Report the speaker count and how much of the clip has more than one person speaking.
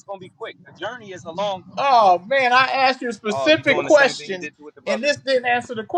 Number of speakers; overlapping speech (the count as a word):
two, about 24%